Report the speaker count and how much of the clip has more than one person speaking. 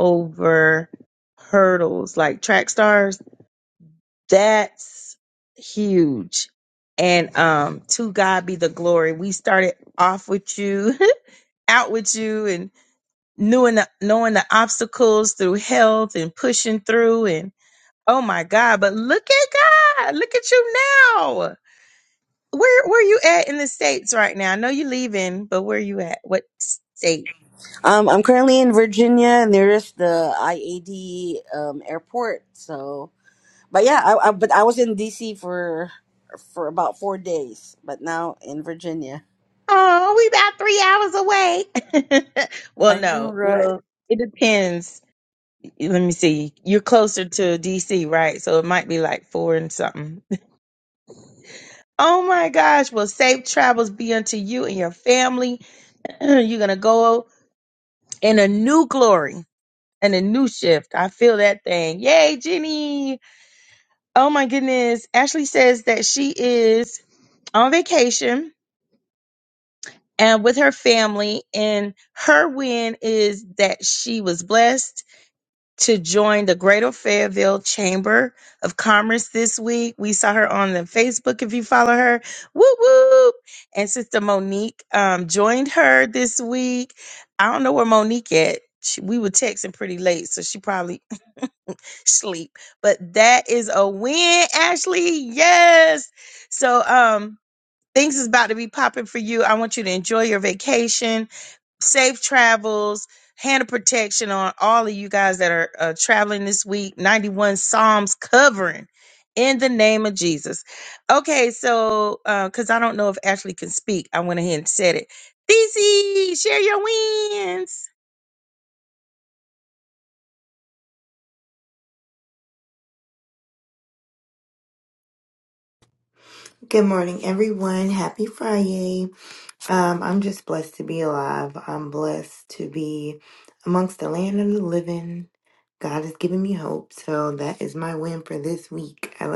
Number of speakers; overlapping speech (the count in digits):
3, about 1%